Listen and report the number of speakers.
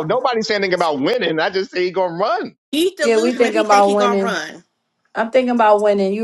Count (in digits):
3